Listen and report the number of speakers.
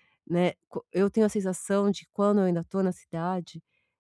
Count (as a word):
one